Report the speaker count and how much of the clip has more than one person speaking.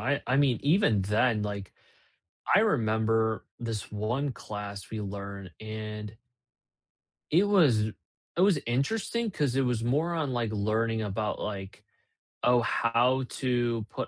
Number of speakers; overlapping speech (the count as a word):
one, no overlap